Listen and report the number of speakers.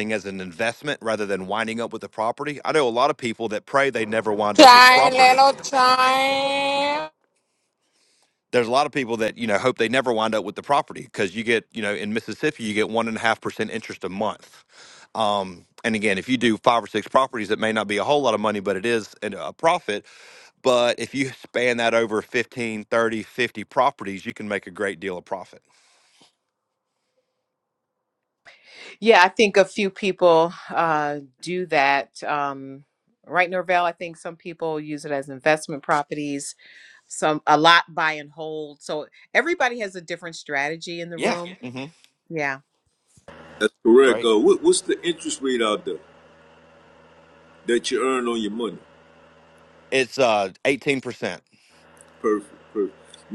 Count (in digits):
4